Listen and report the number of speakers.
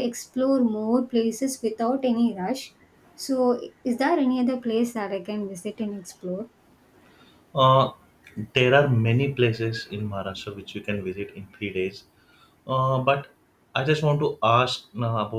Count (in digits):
2